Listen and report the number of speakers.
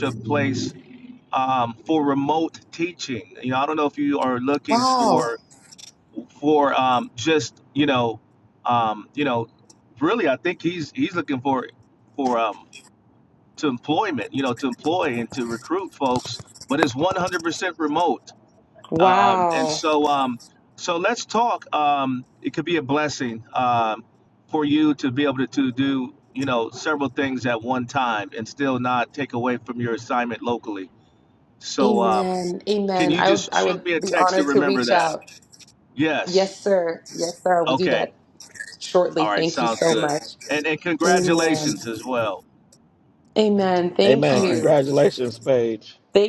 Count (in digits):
3